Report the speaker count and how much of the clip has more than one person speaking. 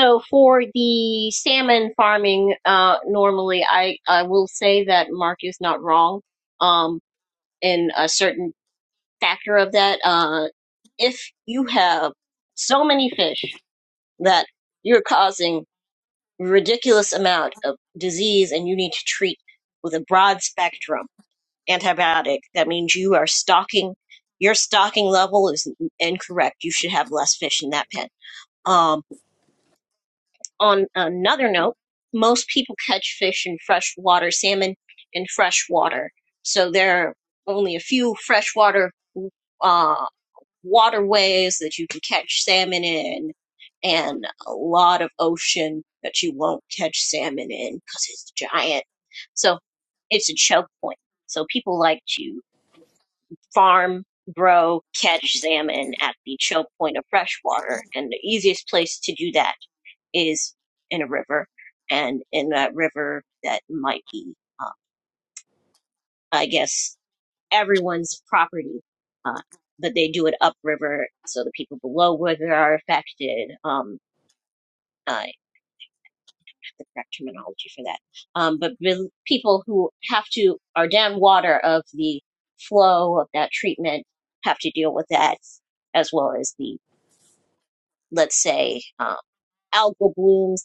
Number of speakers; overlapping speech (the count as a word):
one, no overlap